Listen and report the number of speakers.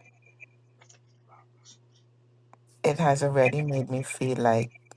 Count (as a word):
one